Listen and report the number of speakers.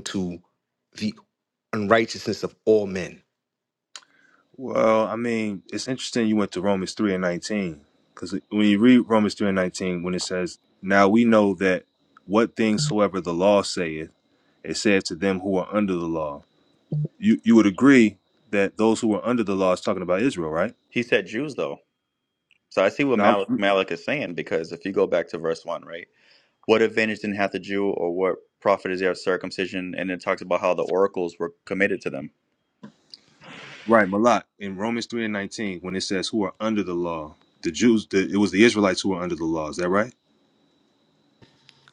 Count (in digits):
3